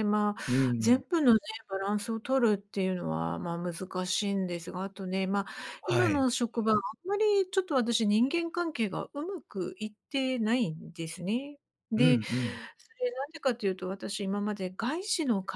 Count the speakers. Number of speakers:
2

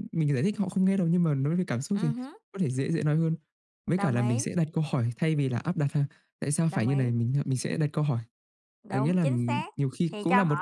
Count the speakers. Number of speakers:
2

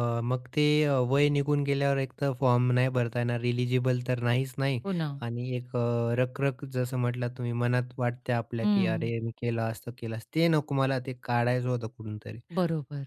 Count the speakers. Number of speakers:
2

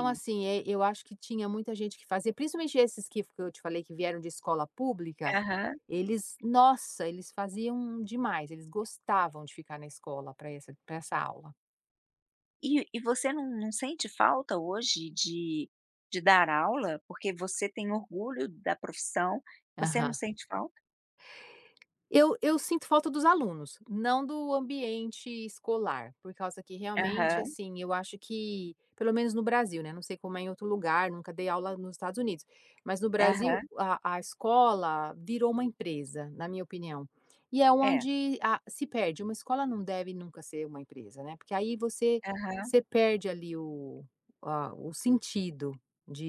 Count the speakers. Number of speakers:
2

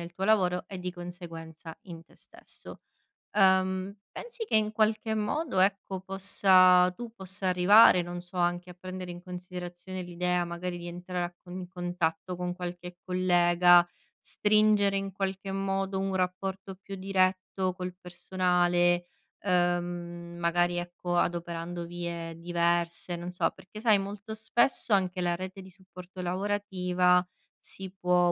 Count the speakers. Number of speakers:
1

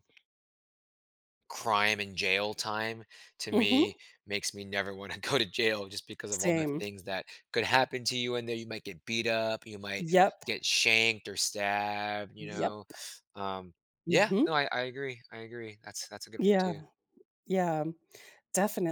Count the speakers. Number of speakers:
2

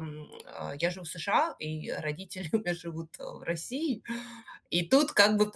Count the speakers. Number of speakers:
1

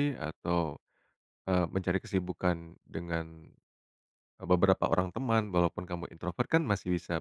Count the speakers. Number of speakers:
1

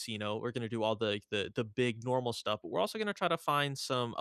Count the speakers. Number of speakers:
1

